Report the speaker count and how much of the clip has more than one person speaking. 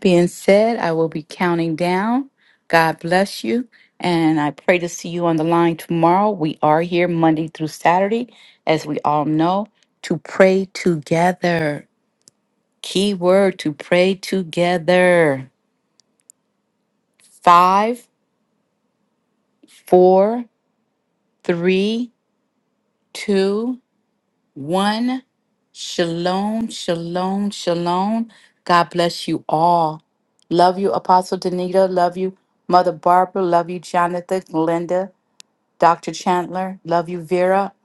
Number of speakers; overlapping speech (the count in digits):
1, no overlap